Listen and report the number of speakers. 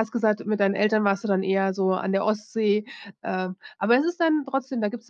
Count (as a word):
one